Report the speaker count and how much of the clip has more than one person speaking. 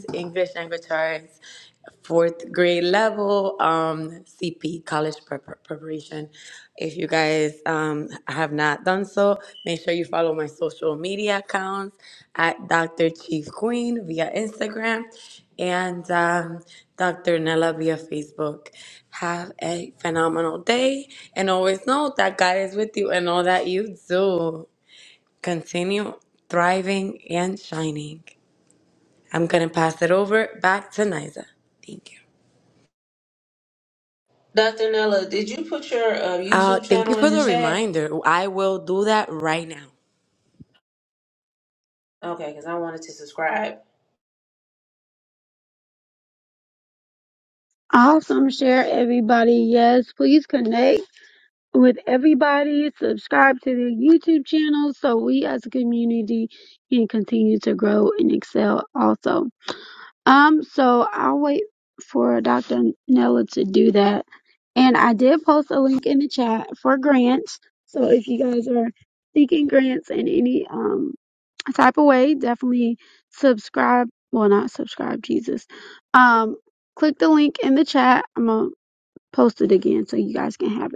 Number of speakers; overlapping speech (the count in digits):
3, about 2%